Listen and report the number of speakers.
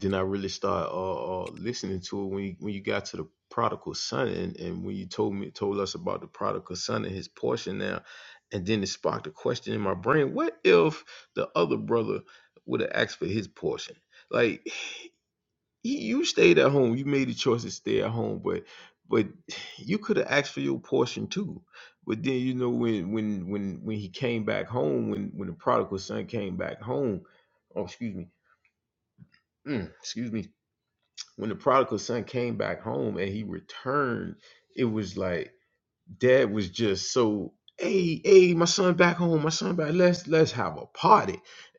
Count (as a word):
one